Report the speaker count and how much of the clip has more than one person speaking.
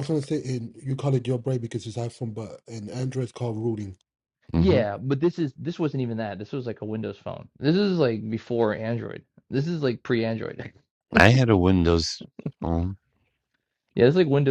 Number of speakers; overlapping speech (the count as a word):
three, about 2%